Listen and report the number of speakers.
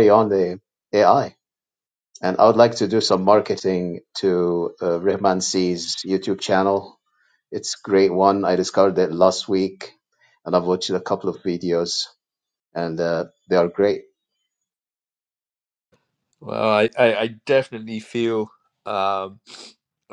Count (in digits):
2